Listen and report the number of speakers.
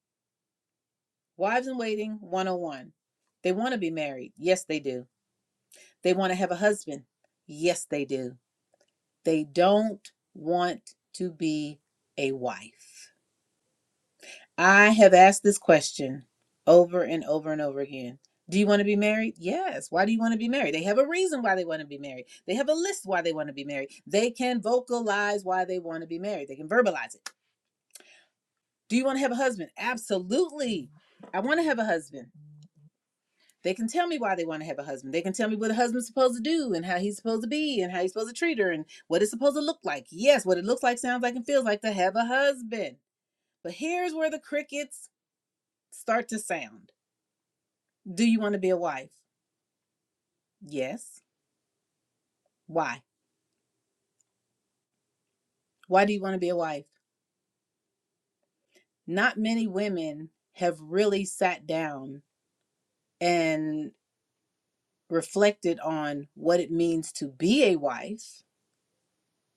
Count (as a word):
one